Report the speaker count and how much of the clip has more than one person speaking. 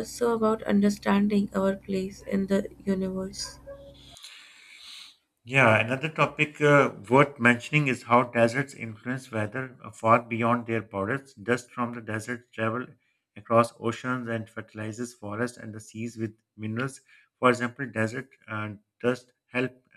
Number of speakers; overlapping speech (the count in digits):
2, no overlap